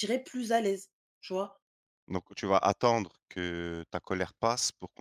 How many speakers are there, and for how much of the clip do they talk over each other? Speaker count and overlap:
two, no overlap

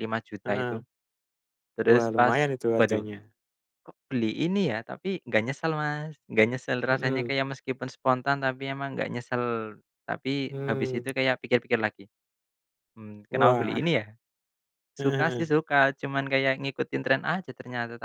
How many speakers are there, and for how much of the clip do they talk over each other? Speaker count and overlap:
two, about 17%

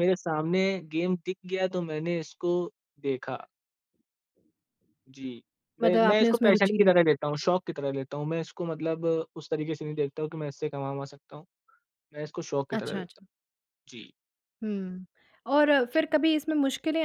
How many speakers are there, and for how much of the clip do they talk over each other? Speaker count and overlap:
two, about 8%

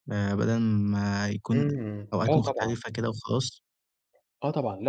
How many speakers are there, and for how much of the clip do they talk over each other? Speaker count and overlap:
two, about 17%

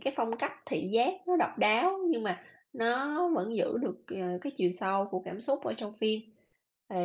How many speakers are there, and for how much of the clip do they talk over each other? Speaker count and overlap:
one, no overlap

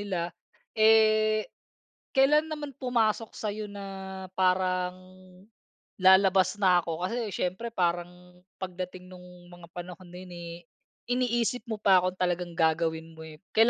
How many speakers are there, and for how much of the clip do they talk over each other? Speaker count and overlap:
one, no overlap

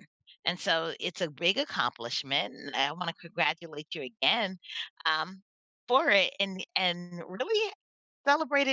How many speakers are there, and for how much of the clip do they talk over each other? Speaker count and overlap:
one, no overlap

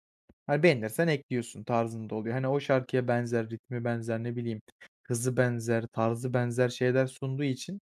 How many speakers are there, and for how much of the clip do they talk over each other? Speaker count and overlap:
one, no overlap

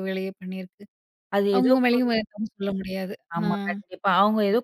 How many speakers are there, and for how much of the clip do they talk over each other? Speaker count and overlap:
two, about 19%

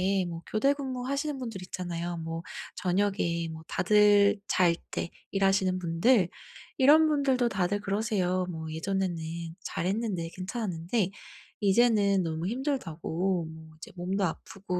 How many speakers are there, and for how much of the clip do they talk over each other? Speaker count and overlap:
one, no overlap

